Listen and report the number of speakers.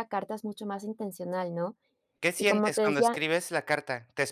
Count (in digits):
2